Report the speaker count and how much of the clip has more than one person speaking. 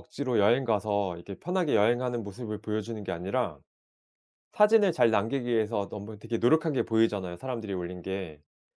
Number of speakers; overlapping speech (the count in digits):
1, no overlap